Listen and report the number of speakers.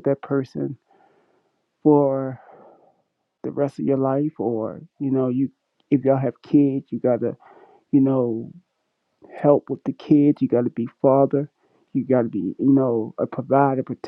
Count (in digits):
1